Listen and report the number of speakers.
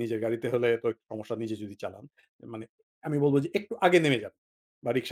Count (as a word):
one